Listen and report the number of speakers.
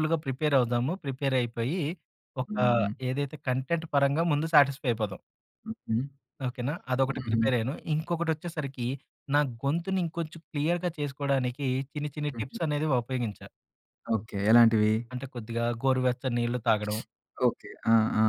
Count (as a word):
two